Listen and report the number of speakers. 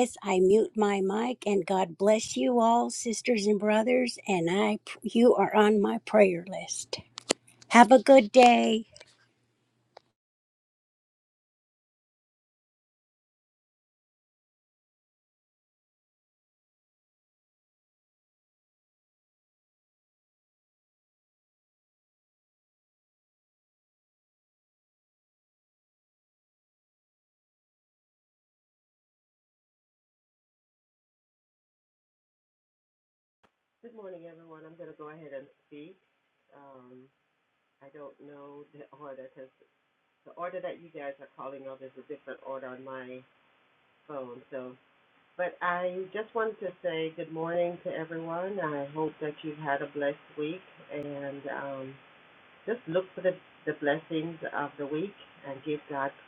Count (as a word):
two